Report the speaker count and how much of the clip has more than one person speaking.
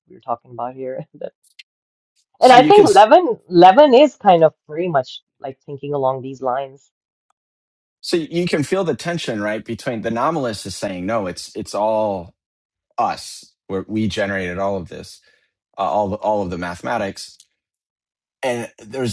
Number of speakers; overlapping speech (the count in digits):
2, about 3%